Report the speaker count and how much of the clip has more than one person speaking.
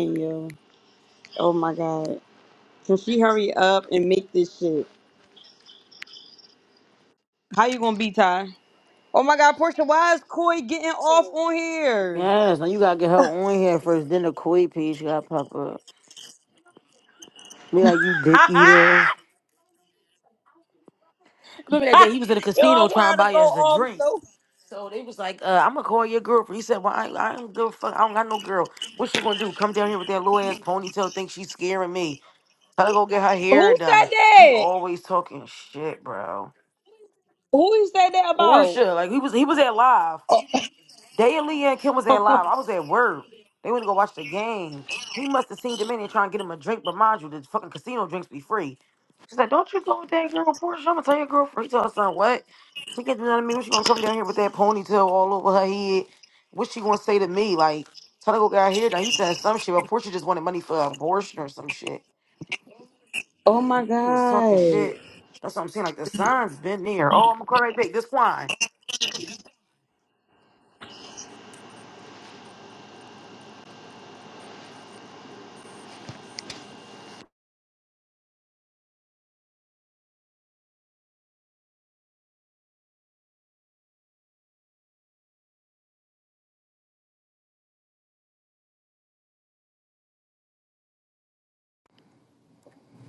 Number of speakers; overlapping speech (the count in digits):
2, about 5%